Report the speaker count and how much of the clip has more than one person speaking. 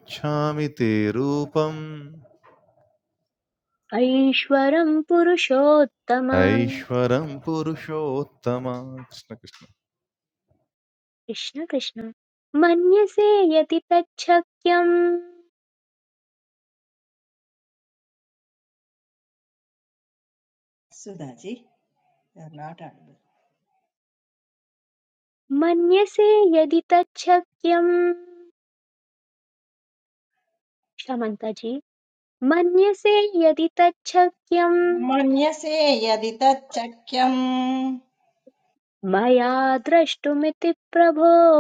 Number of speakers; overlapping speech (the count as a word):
three, no overlap